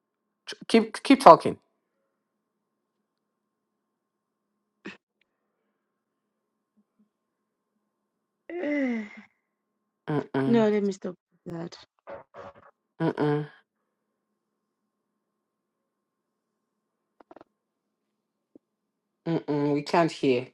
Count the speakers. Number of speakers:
2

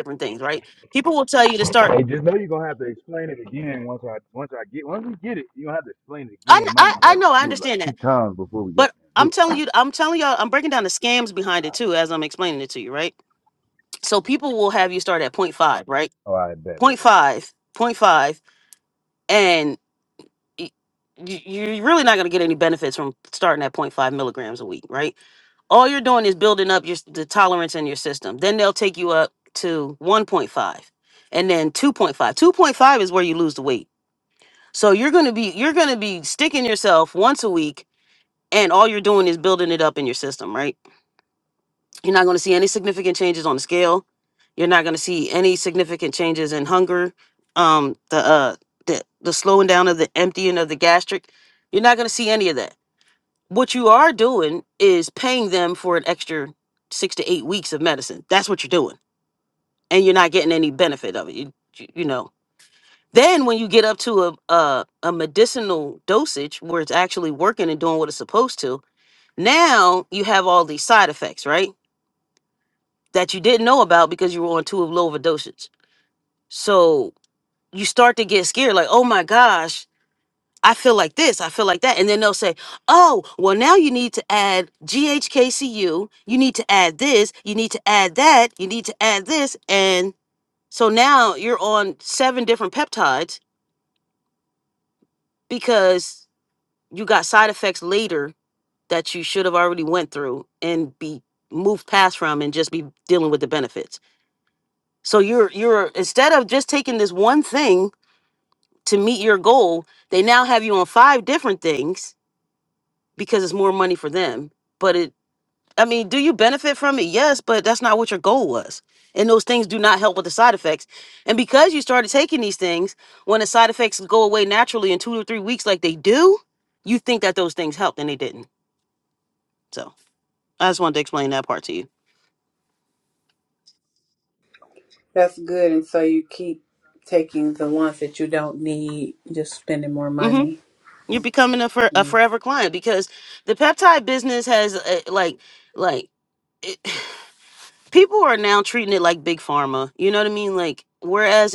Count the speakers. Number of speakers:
3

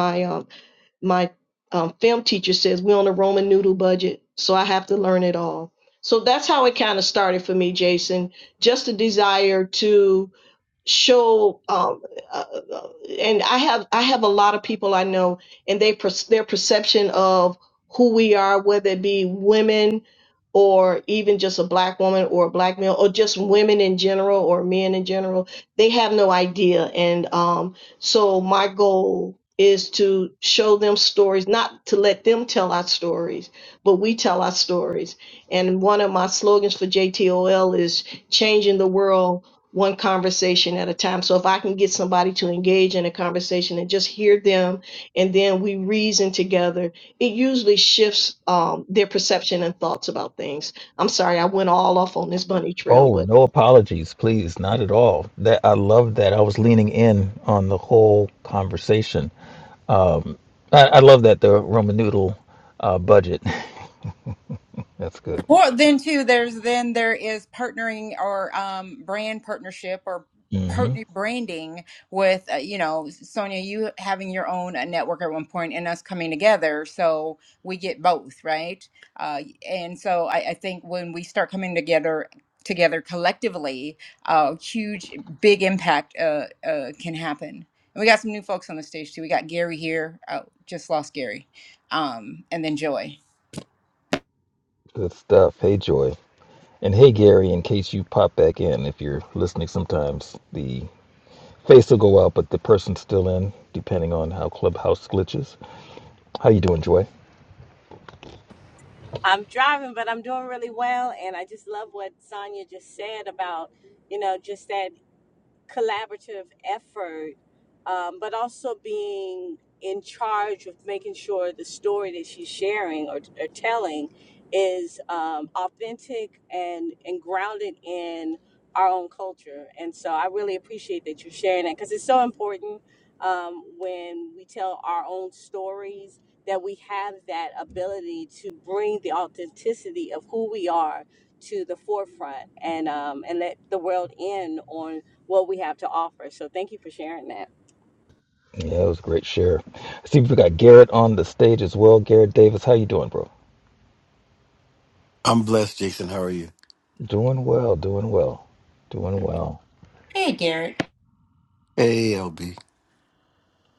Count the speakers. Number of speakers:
5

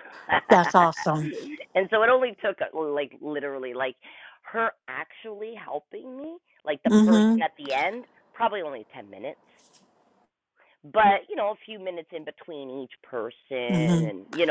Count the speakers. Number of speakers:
2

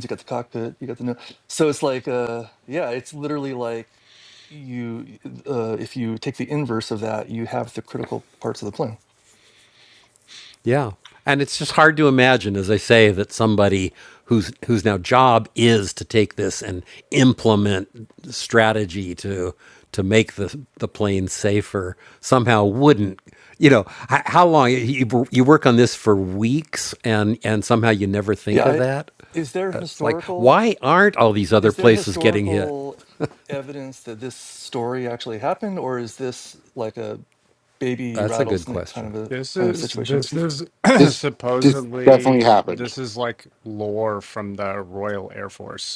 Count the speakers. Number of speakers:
4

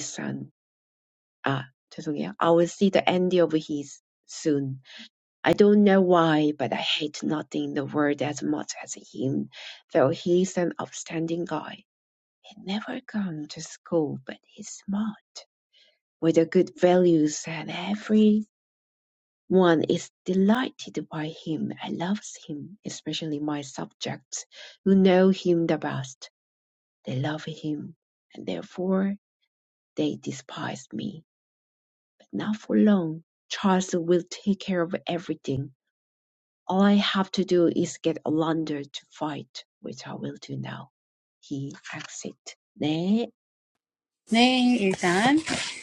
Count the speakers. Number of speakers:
2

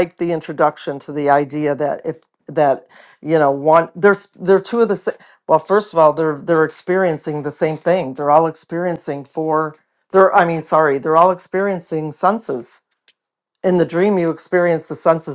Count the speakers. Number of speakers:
1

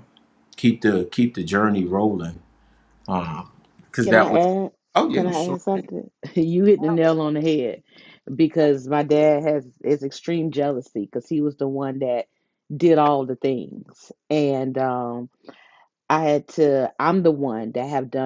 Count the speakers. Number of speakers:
2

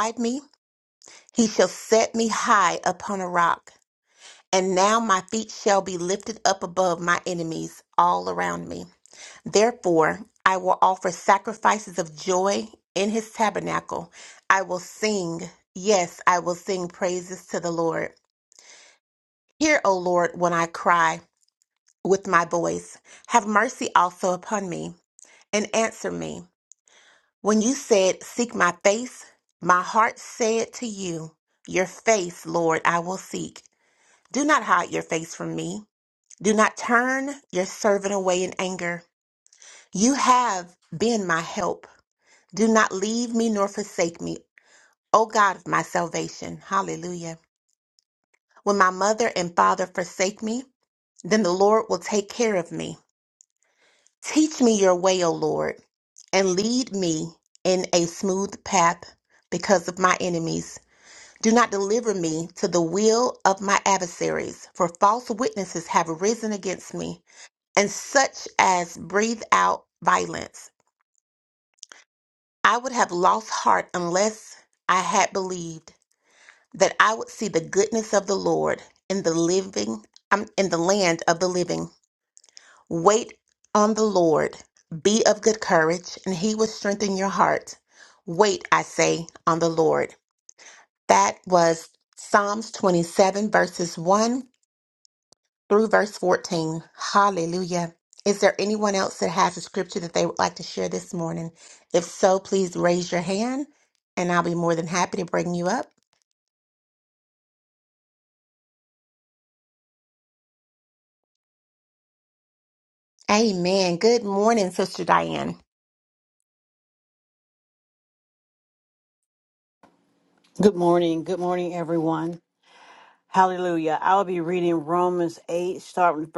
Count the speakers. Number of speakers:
2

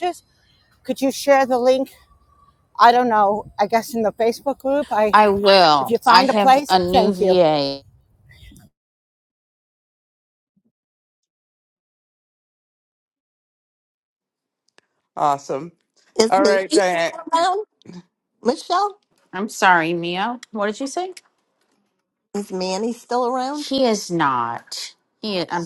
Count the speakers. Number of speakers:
4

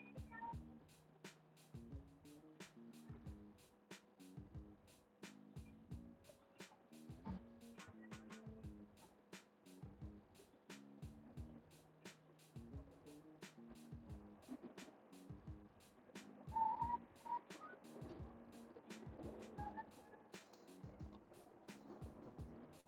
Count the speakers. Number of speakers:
0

